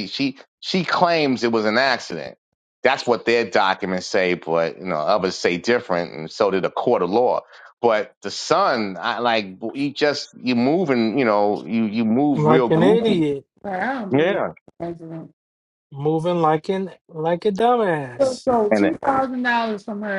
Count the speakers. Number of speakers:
three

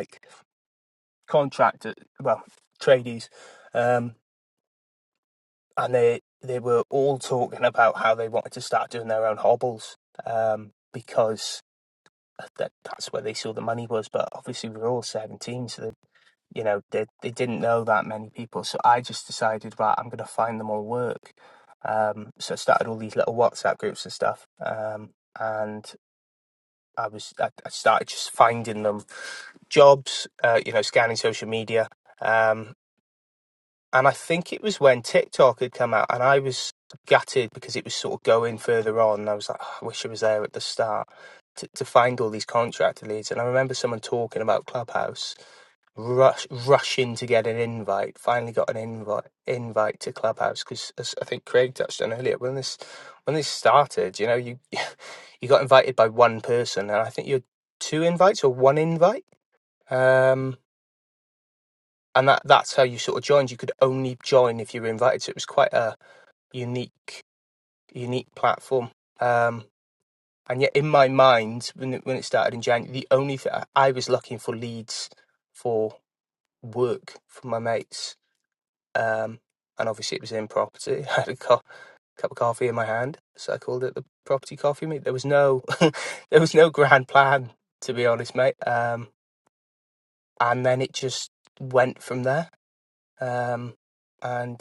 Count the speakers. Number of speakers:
one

